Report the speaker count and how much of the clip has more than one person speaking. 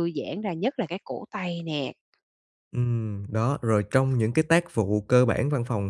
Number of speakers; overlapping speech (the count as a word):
two, no overlap